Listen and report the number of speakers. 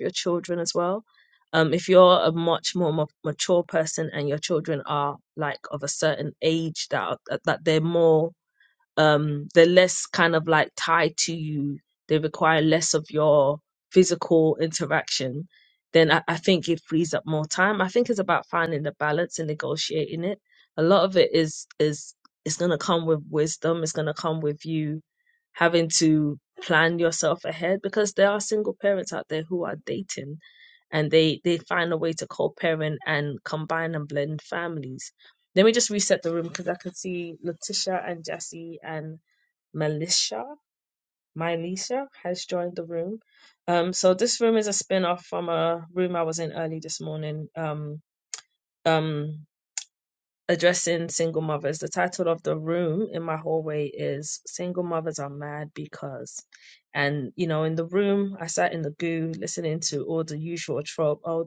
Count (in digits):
1